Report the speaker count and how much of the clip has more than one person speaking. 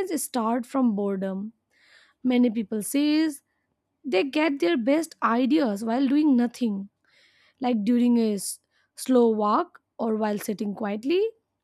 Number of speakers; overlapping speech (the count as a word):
one, no overlap